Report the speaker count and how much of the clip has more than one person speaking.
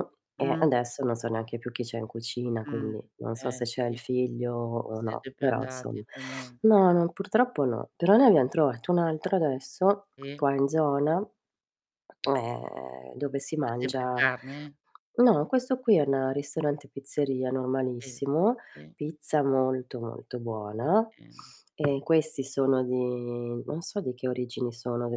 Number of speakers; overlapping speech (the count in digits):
2, about 11%